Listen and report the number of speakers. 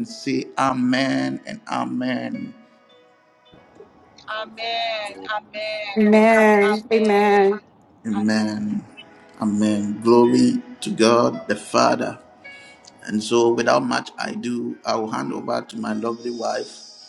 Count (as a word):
three